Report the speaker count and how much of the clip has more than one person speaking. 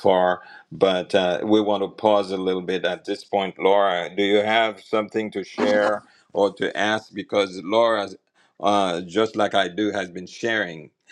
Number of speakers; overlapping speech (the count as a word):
one, no overlap